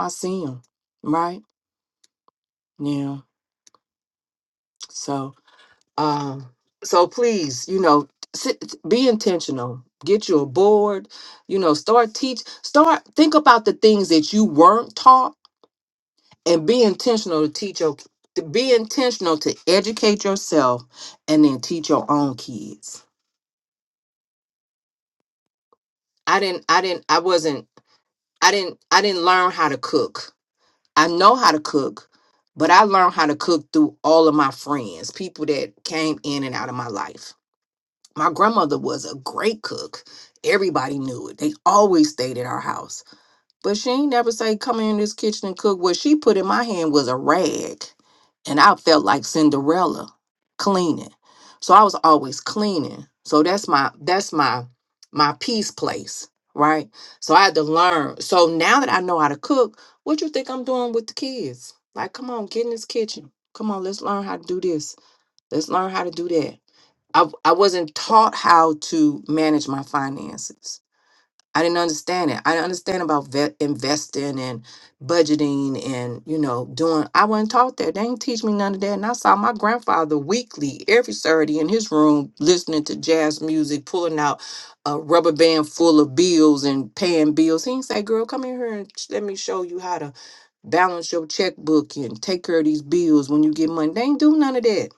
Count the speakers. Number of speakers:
one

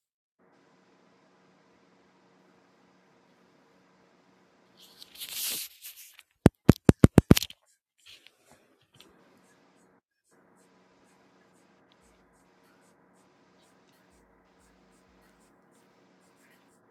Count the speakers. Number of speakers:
zero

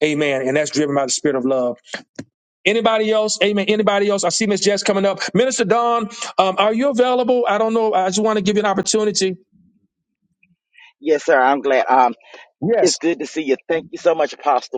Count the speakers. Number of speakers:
two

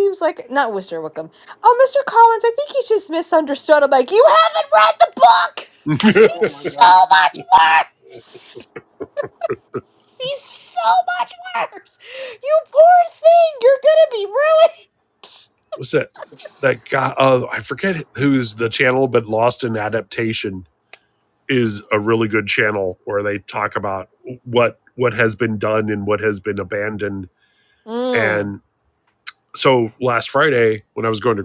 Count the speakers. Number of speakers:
two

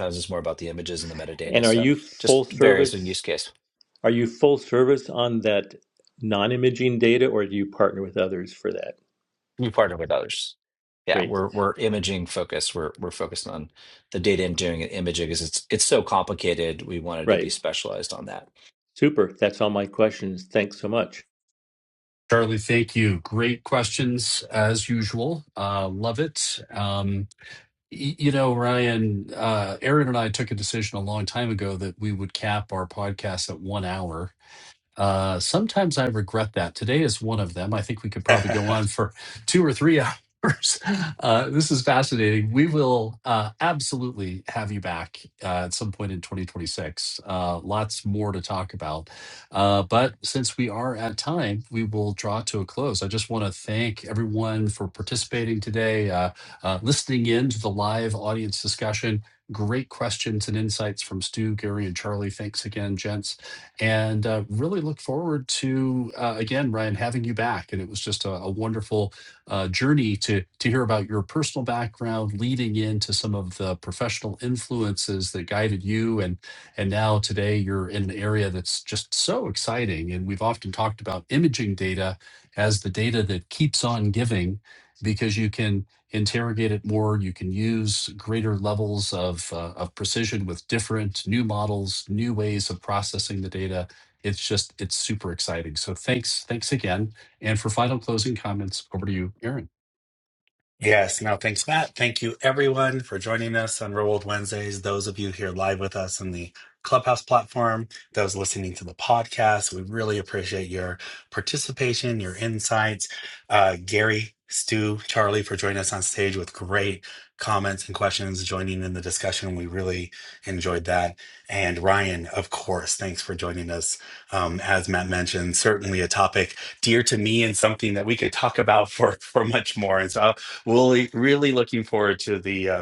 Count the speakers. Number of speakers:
four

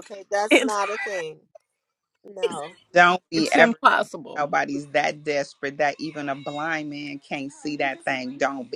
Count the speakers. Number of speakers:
three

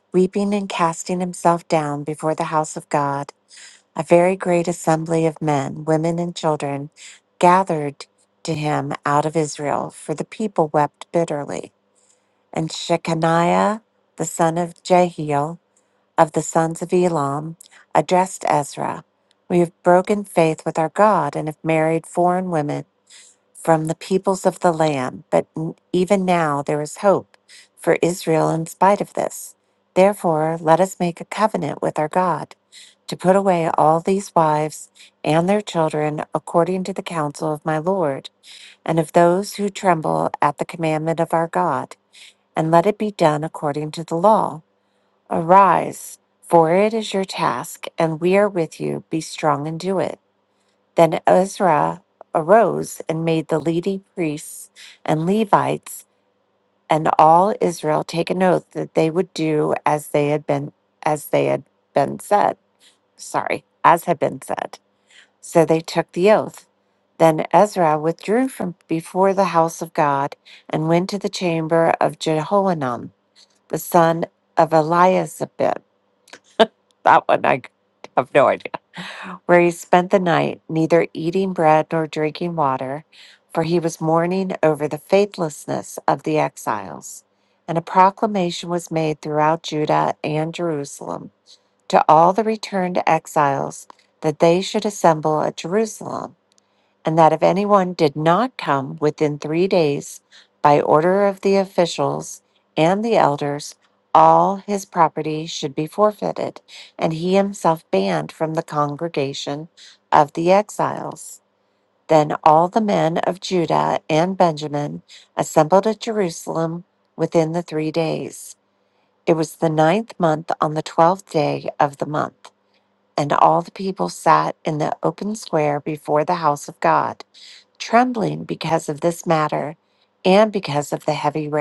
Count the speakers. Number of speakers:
one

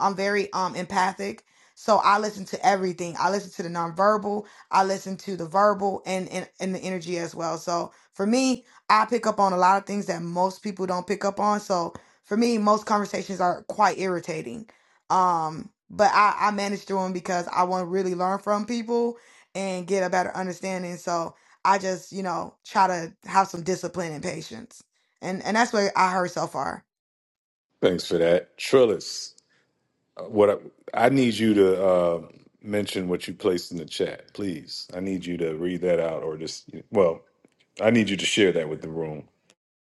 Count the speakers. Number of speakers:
two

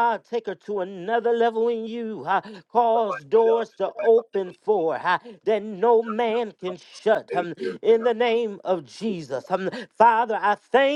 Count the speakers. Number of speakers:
one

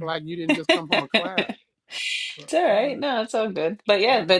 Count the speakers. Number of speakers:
two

